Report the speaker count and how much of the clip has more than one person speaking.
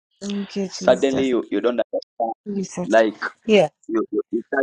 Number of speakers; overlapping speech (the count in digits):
2, about 14%